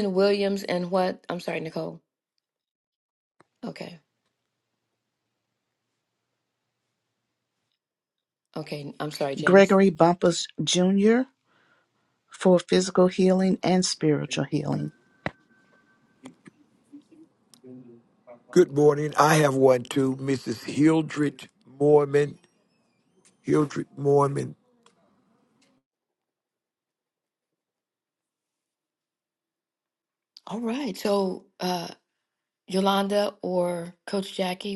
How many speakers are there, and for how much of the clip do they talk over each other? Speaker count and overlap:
three, about 1%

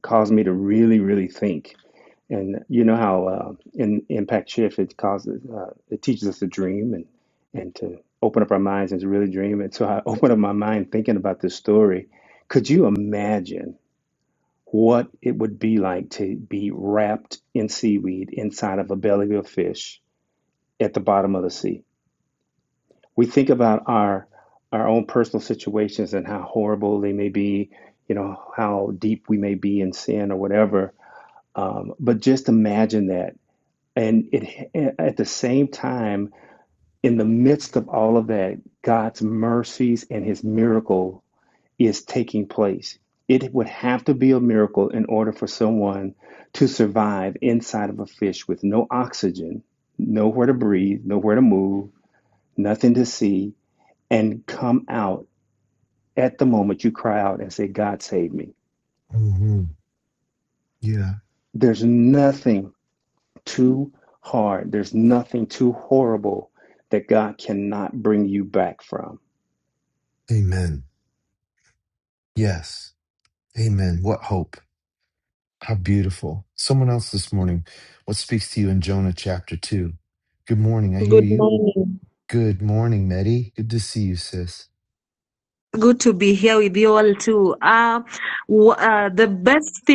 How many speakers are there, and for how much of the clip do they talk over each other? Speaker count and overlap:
three, about 1%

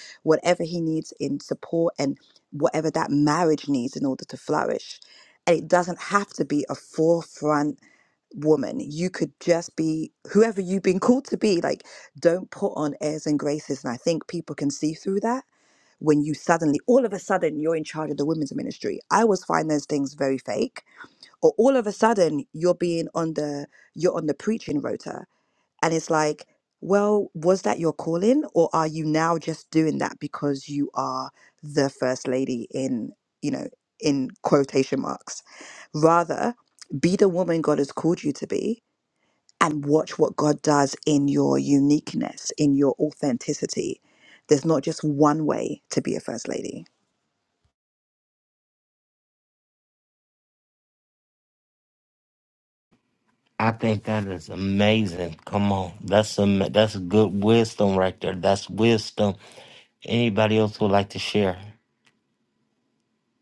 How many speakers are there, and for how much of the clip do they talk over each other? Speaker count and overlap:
two, no overlap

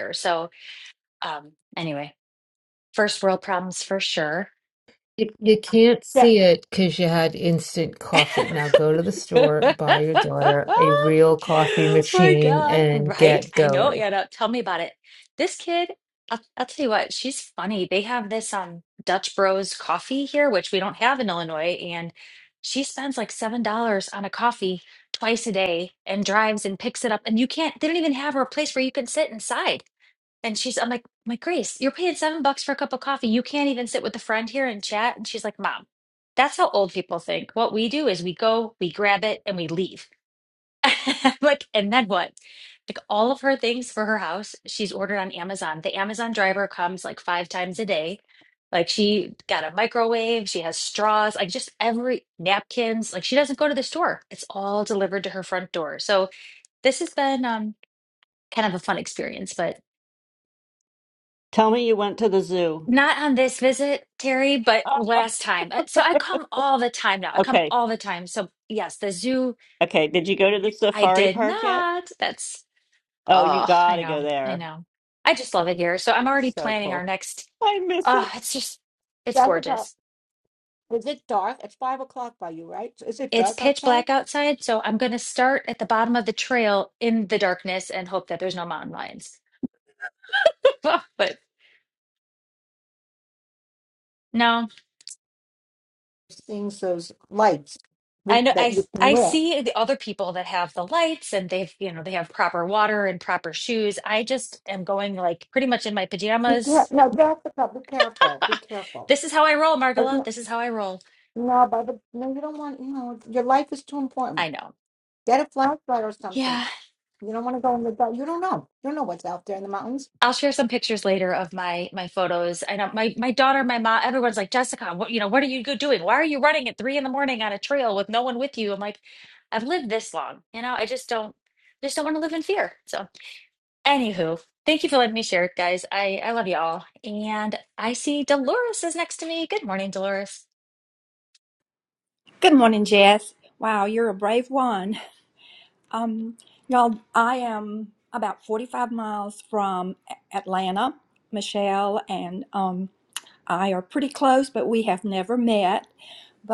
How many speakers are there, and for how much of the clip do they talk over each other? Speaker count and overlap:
five, about 5%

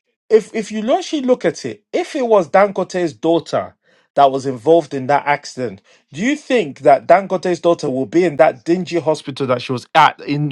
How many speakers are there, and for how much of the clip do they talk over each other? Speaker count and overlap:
one, no overlap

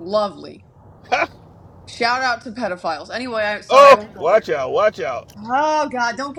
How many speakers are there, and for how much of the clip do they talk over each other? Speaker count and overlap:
two, about 12%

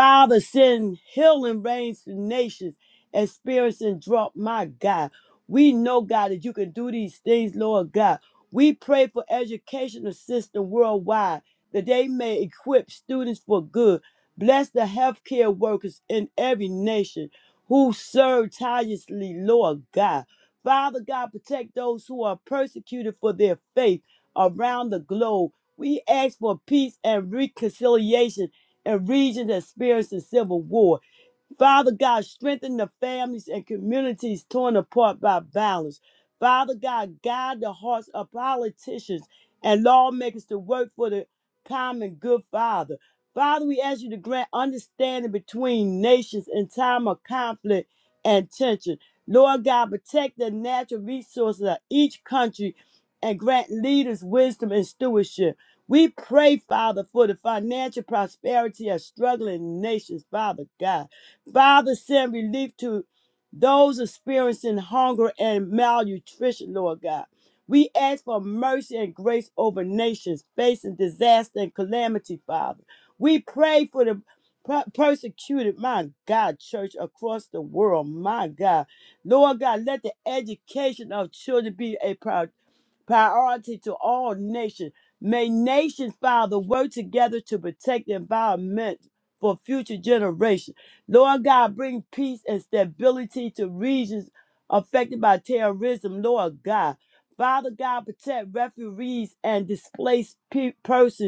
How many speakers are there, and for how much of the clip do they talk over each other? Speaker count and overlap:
one, no overlap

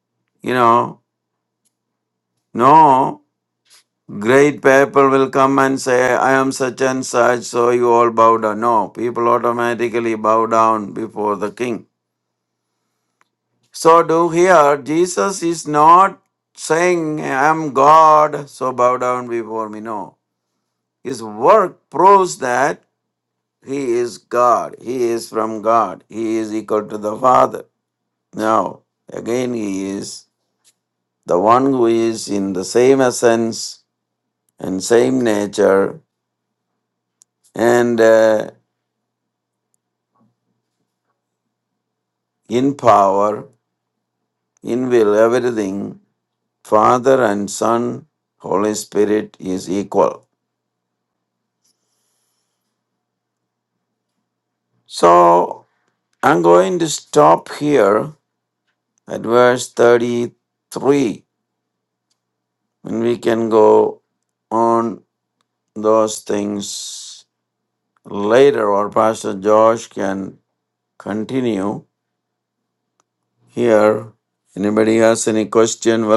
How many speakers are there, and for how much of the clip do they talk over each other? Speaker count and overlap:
one, no overlap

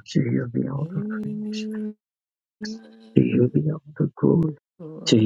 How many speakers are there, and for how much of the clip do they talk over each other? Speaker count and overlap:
two, about 29%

